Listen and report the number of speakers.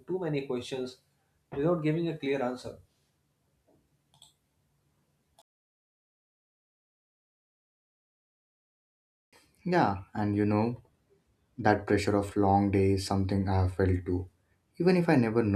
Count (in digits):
2